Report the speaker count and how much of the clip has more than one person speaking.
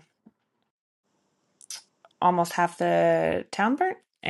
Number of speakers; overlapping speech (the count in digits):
1, no overlap